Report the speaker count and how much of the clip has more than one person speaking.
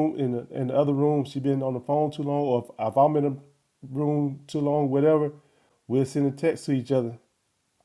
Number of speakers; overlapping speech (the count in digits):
1, no overlap